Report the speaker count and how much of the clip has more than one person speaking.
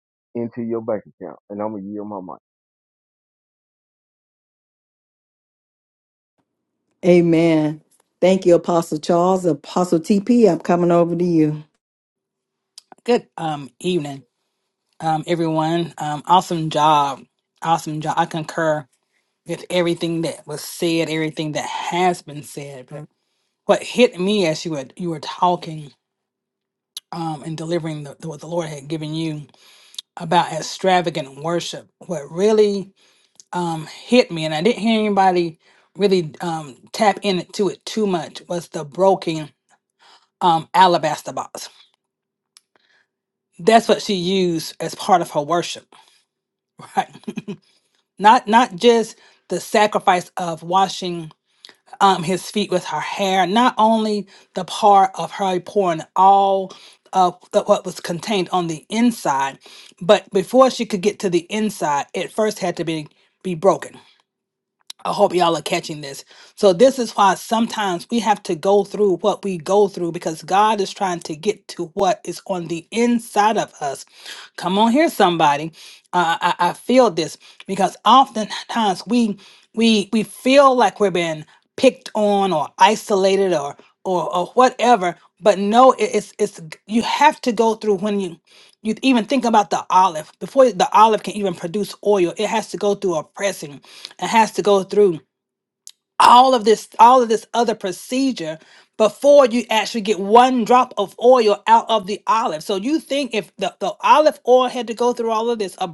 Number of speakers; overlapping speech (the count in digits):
3, no overlap